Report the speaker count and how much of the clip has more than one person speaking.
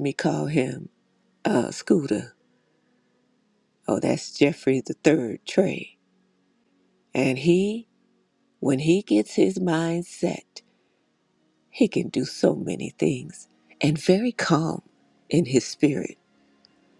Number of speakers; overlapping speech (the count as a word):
one, no overlap